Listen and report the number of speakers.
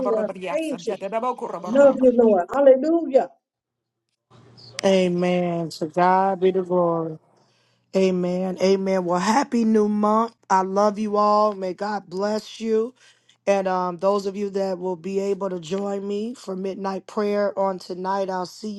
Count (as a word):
three